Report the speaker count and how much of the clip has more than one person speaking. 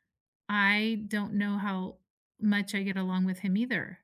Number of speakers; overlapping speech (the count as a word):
one, no overlap